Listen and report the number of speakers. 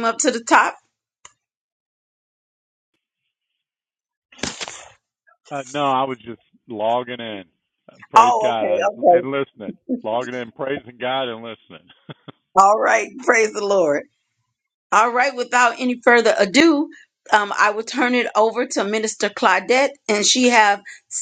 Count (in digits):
2